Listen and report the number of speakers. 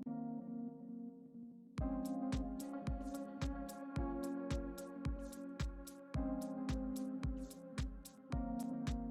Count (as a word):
zero